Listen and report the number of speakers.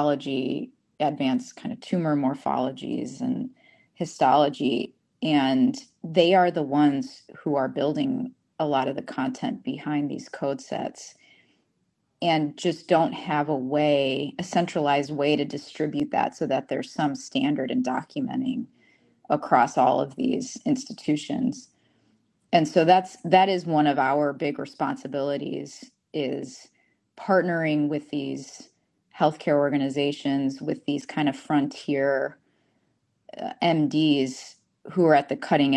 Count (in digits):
1